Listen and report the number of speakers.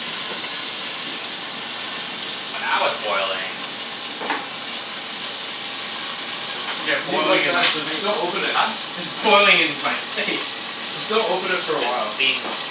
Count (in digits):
3